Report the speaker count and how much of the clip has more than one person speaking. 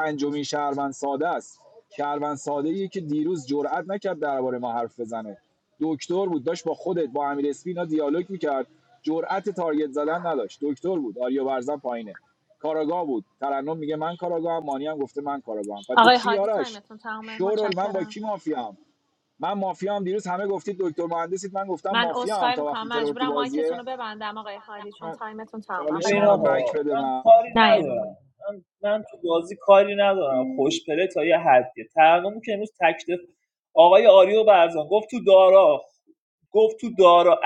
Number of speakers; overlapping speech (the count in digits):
3, about 15%